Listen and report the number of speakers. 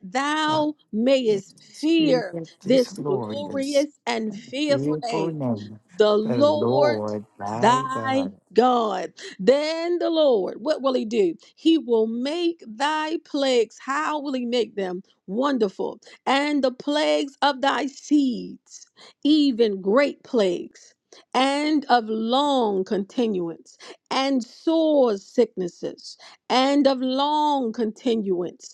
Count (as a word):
two